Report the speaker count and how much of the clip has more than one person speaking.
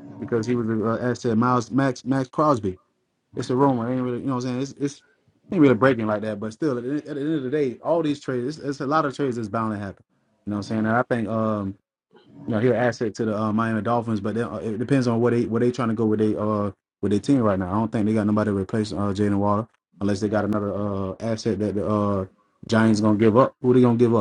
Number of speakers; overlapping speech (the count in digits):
1, no overlap